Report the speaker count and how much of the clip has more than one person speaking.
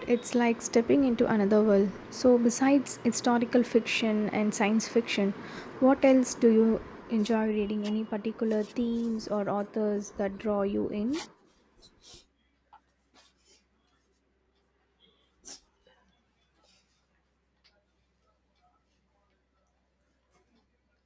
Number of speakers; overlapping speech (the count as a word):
one, no overlap